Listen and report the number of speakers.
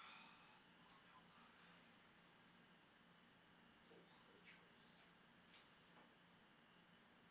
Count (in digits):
1